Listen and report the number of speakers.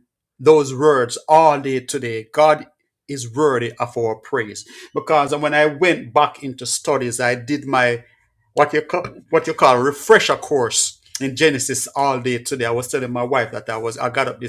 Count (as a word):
one